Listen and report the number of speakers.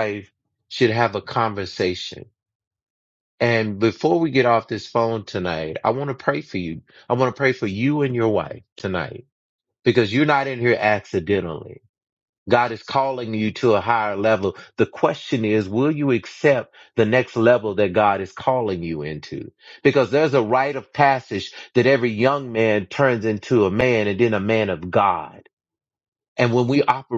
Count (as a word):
one